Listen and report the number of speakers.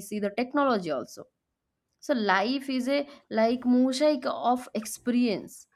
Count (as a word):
one